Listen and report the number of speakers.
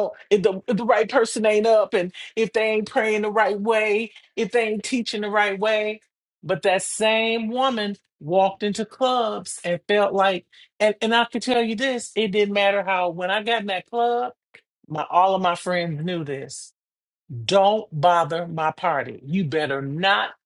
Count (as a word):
one